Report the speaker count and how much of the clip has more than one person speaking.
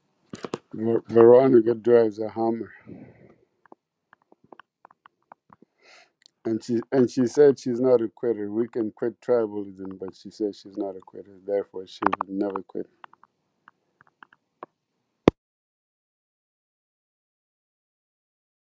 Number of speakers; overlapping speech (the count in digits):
1, no overlap